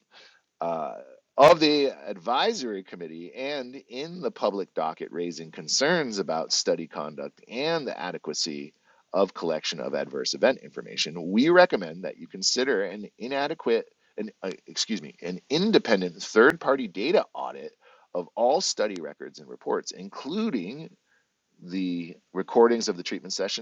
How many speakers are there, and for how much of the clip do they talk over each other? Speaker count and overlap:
1, no overlap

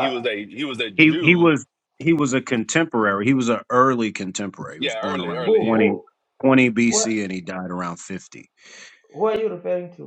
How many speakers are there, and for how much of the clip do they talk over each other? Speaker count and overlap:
3, about 21%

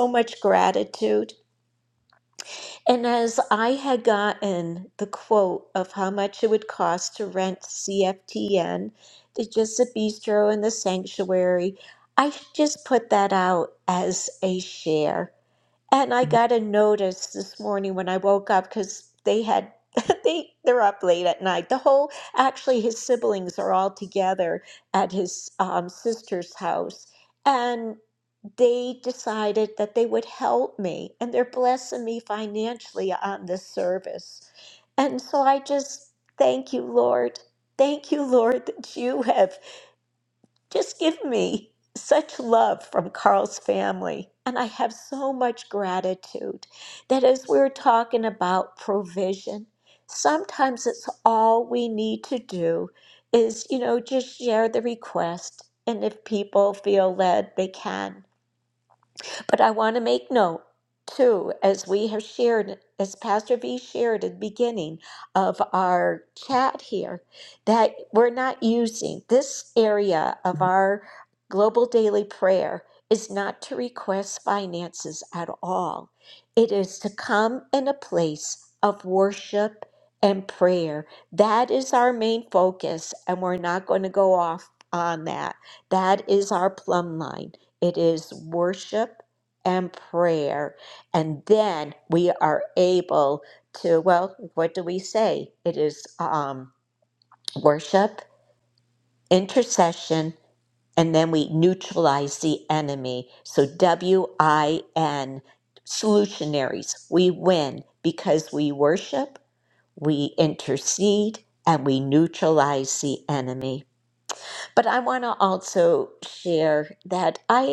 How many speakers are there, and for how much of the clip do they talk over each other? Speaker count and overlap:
1, no overlap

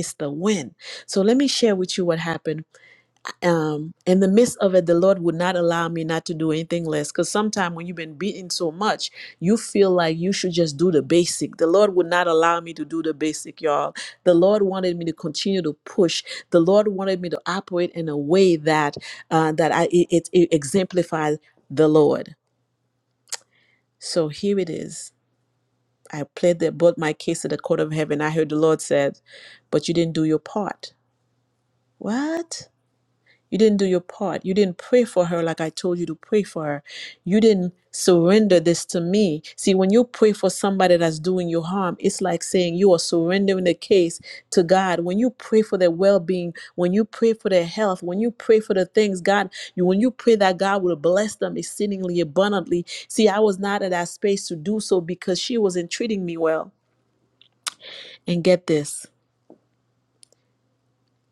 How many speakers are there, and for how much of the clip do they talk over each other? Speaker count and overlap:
1, no overlap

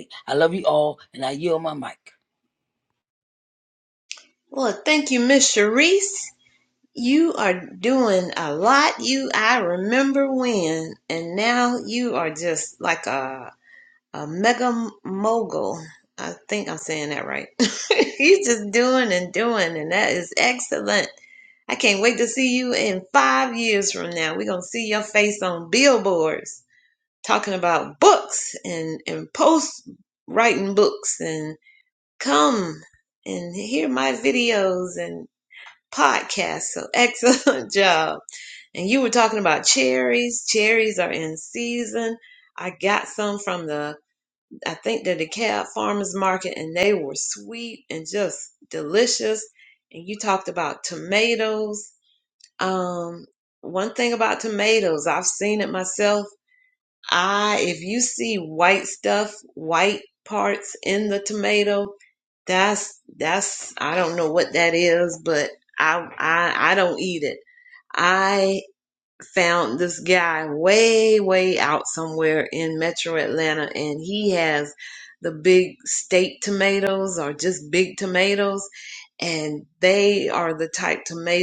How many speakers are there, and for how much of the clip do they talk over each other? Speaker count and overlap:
2, no overlap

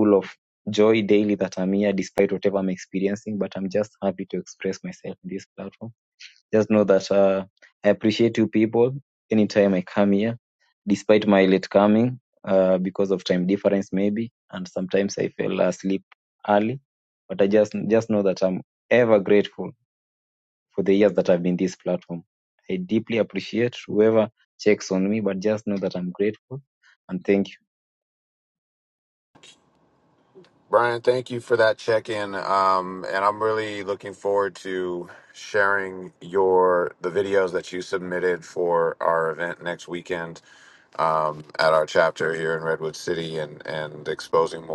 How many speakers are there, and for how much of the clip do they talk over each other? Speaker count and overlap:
2, no overlap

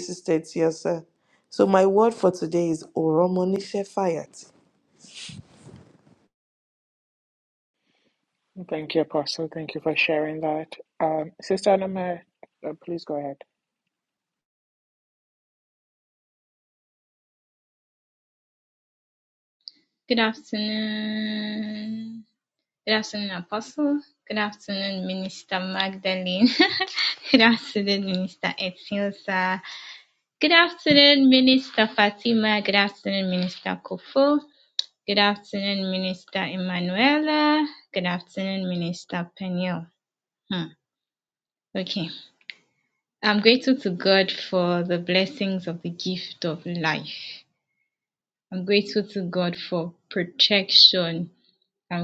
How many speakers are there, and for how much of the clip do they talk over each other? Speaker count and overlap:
3, no overlap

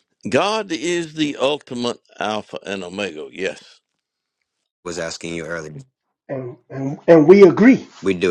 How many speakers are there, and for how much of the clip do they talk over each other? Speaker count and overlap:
3, no overlap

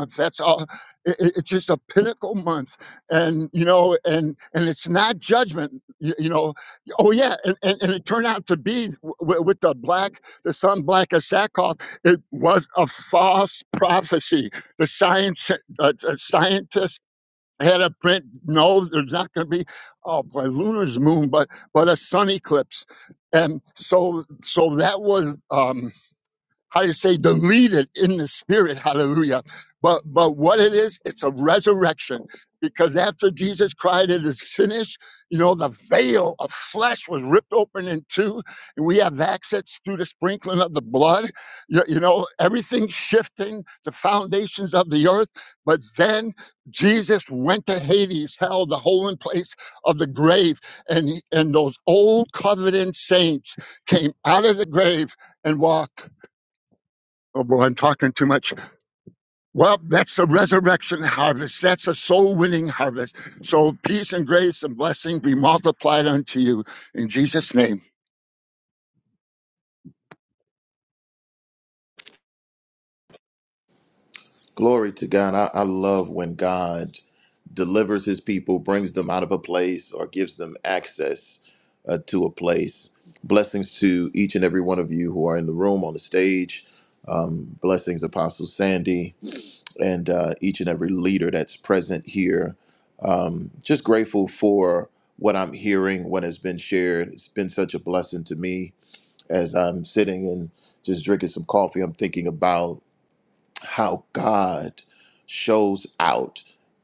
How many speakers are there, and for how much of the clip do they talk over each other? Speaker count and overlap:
2, no overlap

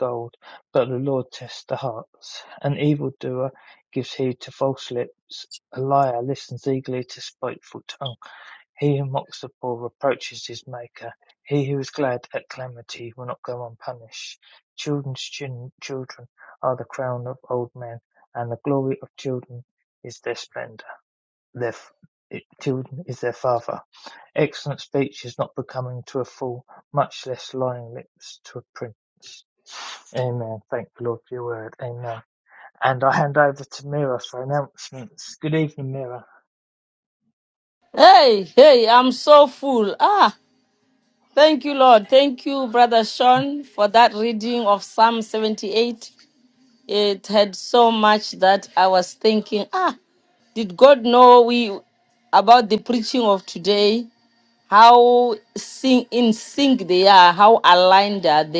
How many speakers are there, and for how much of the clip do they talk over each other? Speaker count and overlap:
2, no overlap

